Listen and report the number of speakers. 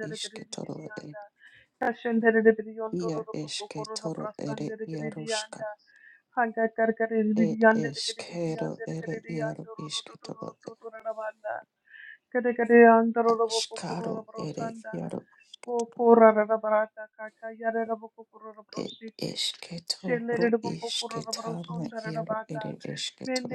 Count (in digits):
2